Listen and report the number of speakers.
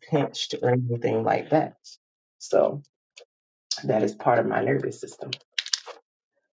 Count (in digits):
1